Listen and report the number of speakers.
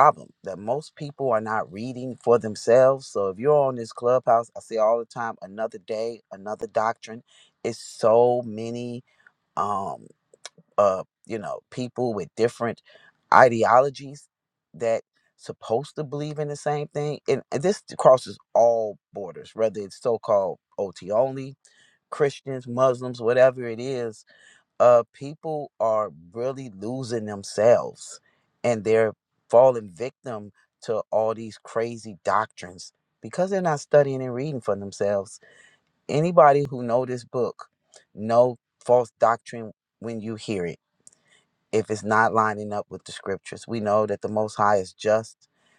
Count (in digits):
1